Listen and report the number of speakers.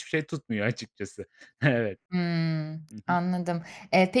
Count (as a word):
two